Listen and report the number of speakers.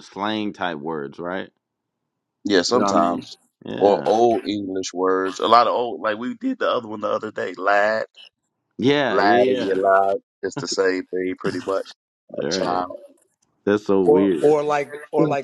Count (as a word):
three